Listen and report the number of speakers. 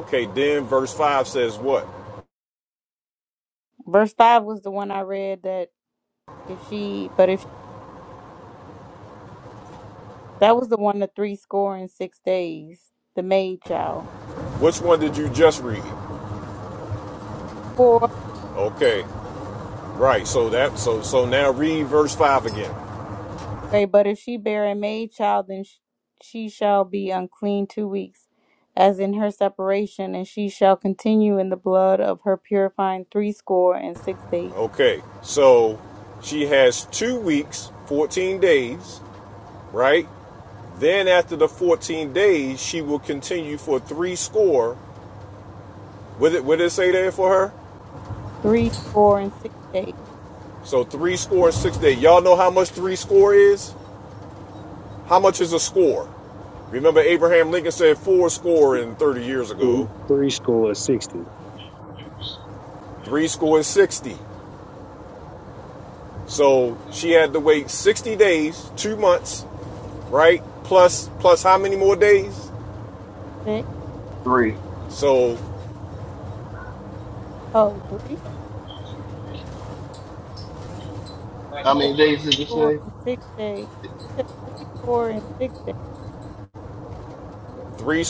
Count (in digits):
4